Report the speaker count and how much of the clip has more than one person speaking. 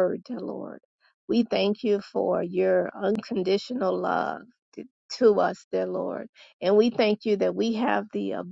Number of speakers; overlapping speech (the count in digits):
1, no overlap